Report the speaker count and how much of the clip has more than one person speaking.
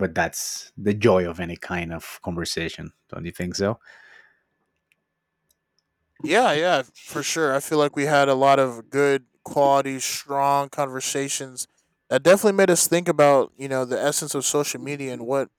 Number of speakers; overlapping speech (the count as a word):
two, no overlap